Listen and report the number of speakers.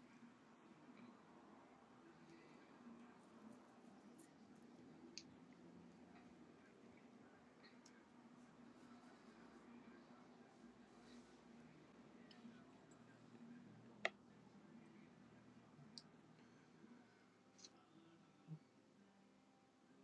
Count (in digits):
0